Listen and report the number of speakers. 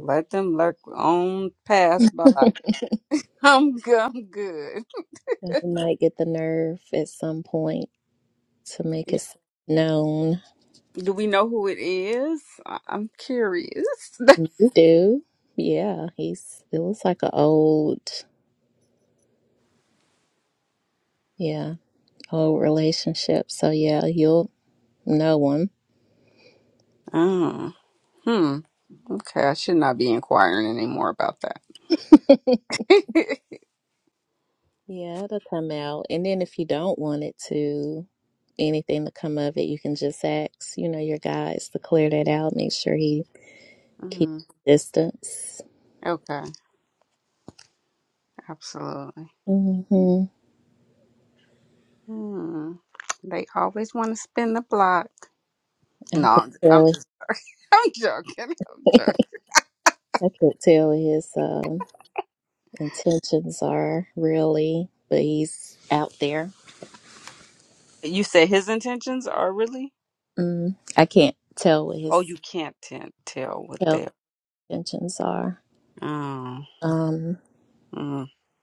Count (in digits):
2